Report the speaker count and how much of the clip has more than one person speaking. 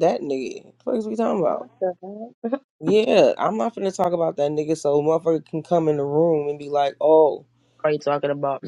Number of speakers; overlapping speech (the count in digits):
2, about 3%